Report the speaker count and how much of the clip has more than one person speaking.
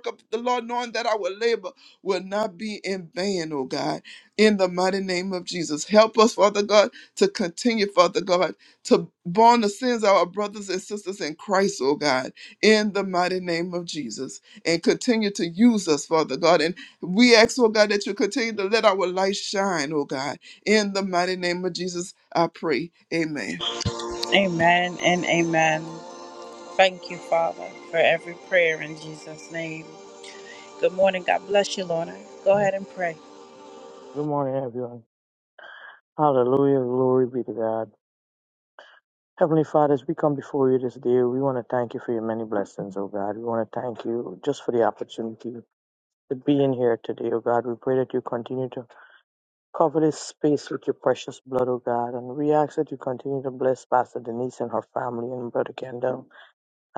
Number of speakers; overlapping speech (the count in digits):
3, no overlap